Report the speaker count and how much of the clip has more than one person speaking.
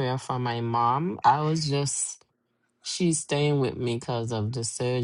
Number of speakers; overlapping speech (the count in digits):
1, no overlap